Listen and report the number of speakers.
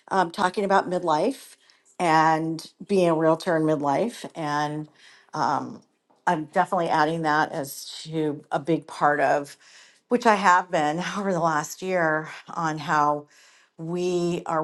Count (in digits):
1